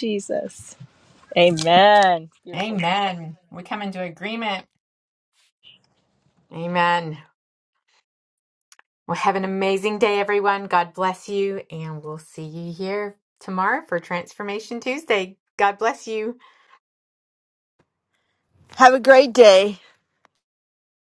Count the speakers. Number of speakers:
3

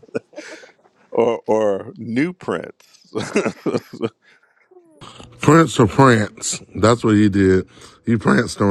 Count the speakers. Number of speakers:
2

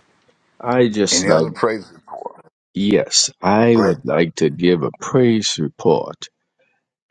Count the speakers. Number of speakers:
2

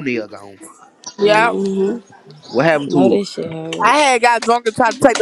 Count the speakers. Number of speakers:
3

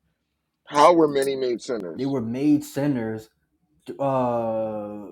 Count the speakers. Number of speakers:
2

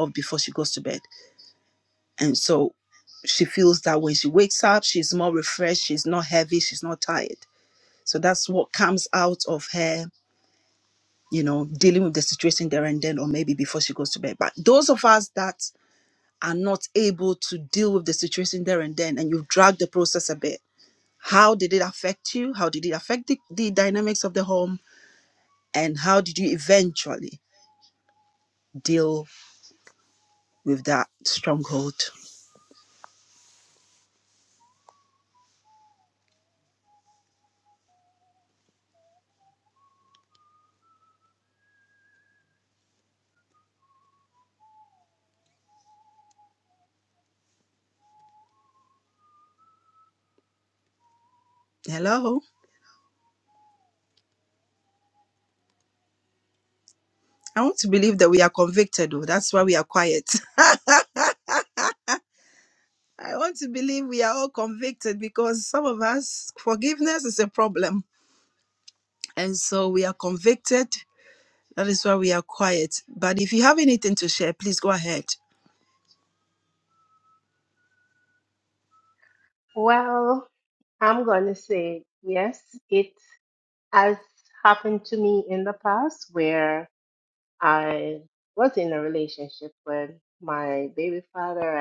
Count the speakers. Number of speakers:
2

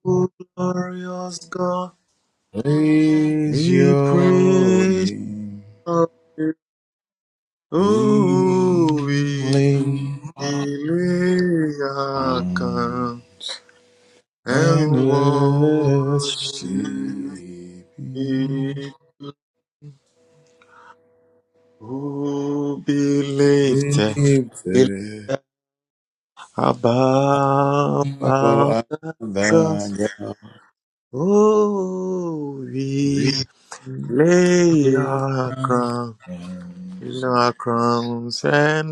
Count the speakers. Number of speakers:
2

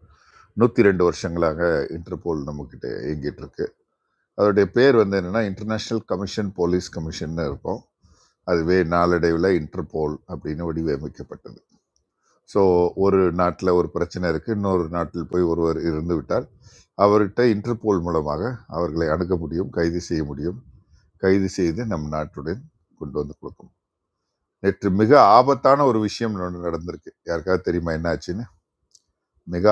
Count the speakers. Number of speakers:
1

